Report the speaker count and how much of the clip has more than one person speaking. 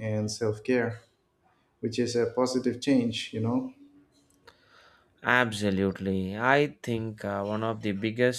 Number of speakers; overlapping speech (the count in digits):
2, no overlap